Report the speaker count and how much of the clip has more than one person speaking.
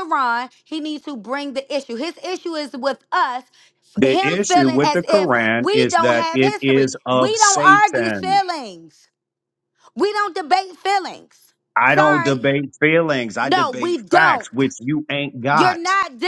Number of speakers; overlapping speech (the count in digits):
2, about 36%